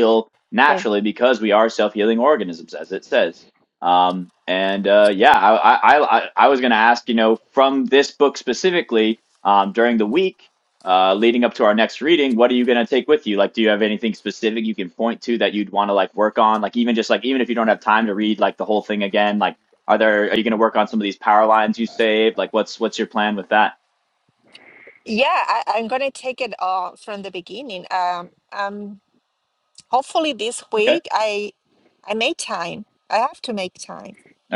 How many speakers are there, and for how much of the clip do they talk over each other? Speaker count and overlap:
2, about 1%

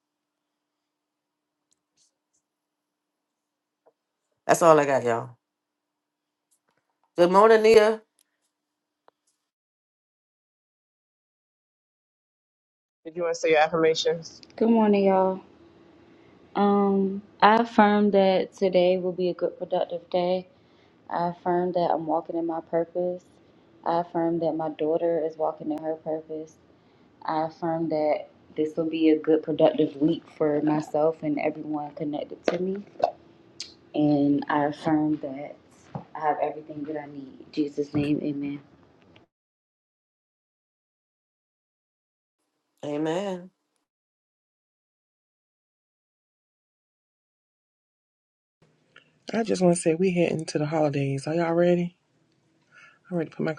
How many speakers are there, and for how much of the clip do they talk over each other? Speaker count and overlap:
4, no overlap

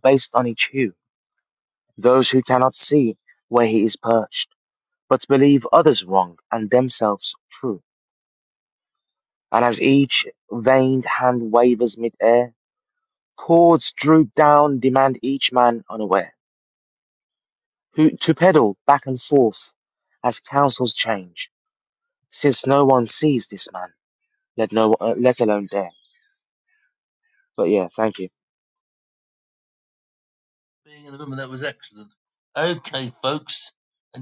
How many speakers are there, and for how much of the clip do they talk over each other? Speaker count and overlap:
2, no overlap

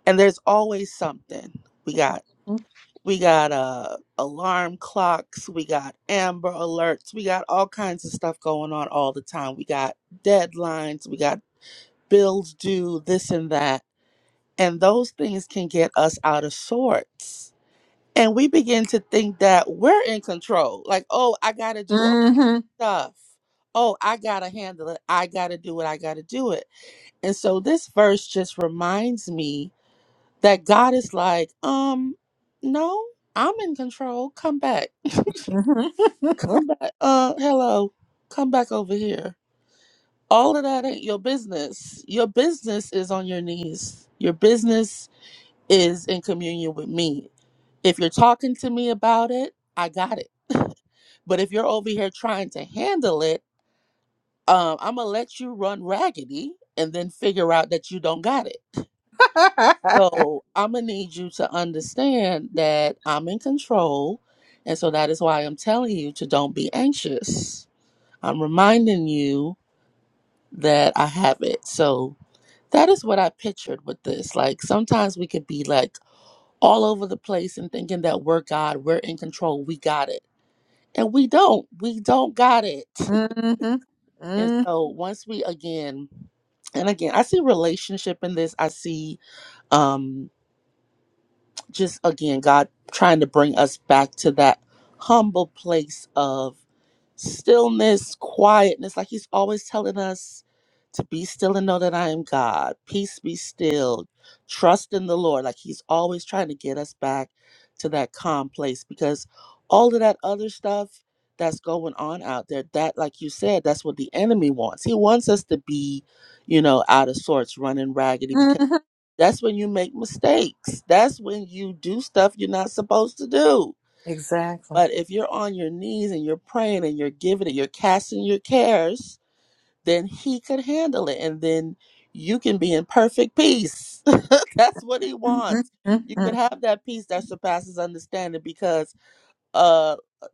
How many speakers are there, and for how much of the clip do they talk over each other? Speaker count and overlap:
2, about 1%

